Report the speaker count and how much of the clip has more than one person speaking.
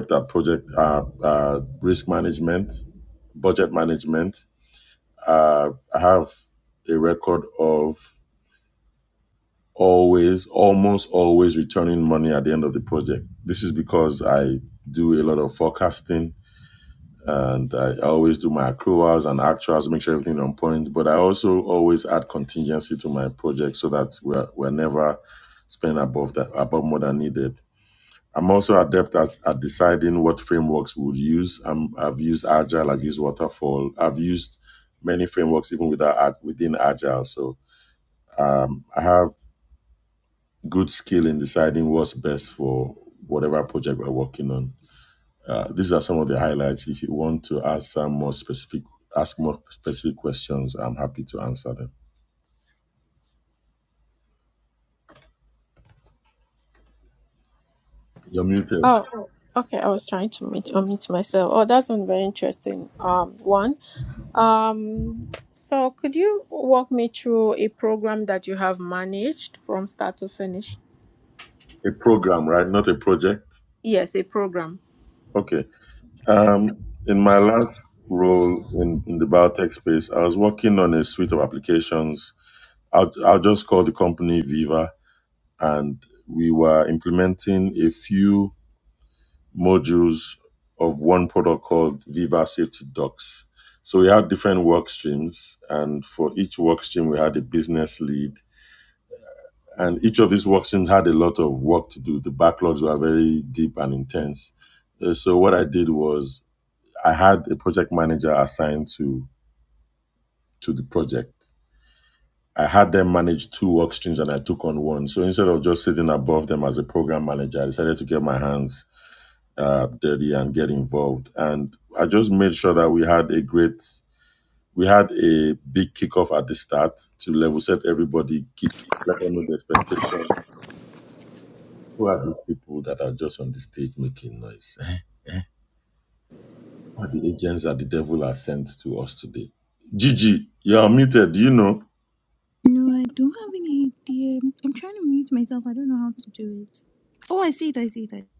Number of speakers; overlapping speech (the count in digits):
3, under 1%